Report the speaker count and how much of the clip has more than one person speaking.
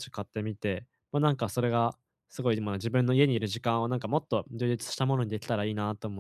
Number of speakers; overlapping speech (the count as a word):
one, no overlap